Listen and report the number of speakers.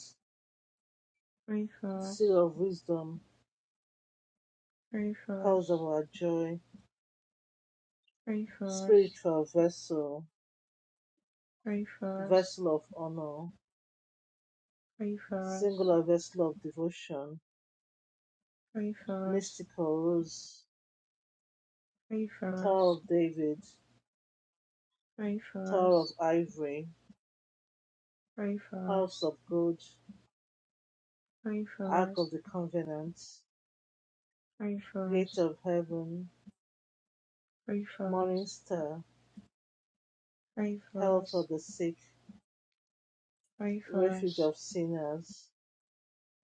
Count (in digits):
2